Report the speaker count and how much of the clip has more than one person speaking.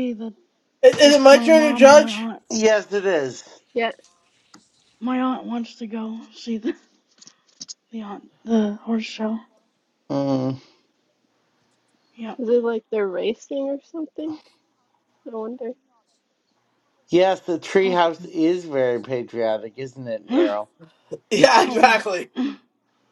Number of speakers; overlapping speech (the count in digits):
4, about 8%